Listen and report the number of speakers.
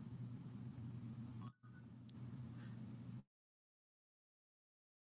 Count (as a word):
zero